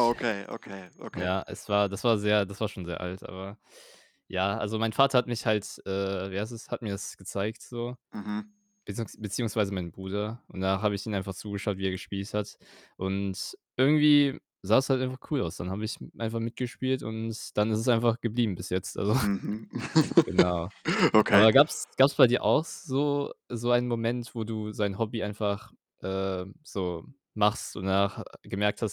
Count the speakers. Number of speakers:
two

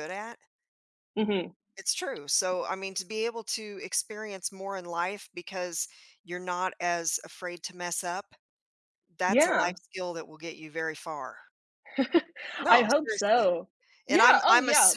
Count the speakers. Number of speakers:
two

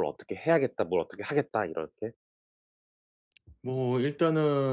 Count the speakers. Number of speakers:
two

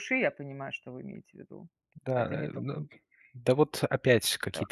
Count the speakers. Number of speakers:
two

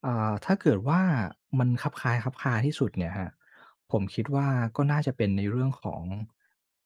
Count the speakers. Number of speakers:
one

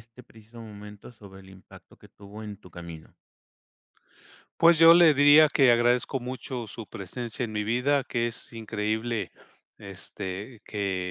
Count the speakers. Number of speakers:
two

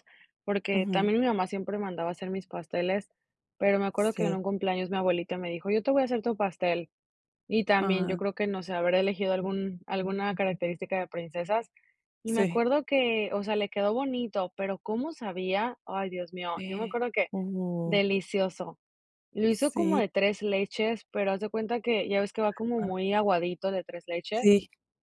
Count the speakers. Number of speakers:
two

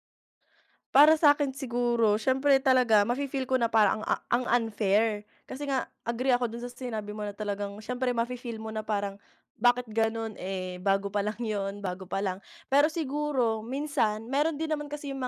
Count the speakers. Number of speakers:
one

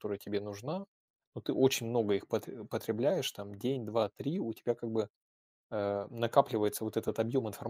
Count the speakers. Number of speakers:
one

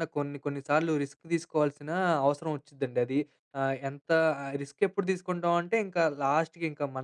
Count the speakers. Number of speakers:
one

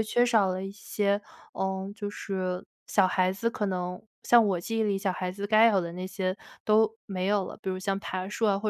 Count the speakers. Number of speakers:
one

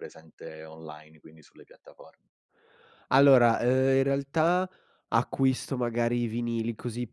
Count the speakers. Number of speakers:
two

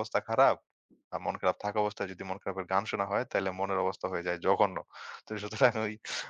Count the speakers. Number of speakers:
one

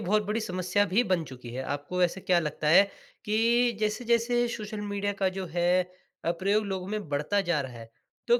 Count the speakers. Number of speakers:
one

